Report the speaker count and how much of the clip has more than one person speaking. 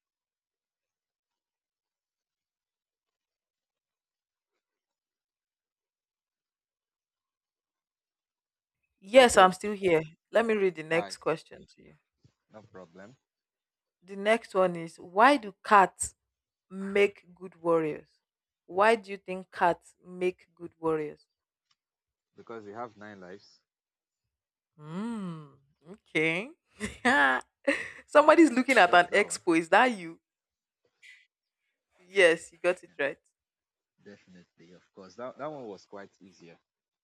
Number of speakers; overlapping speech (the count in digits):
2, about 3%